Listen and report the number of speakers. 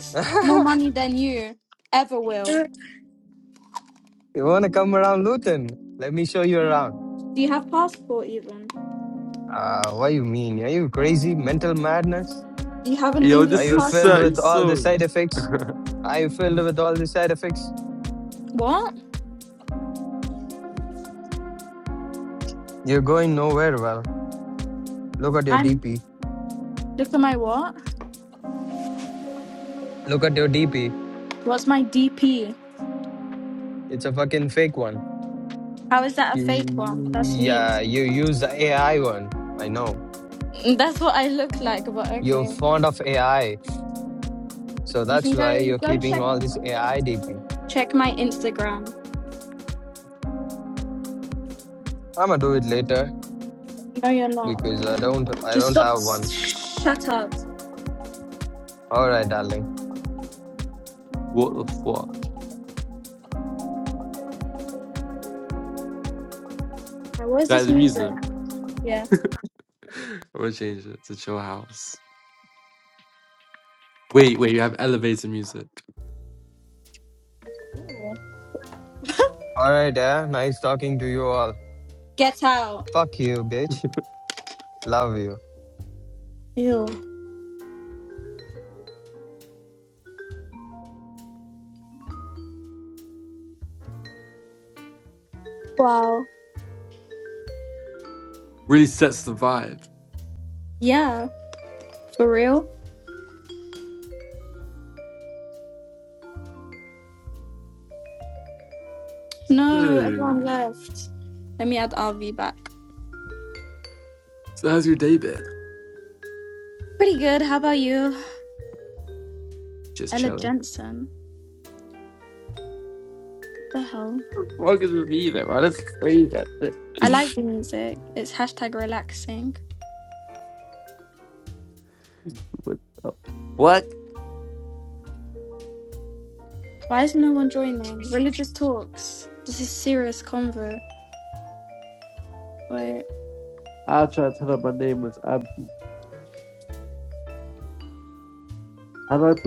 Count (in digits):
3